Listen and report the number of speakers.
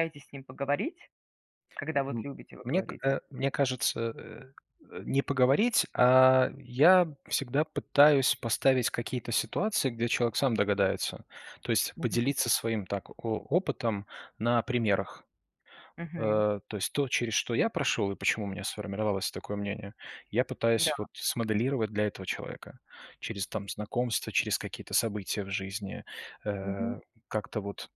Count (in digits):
2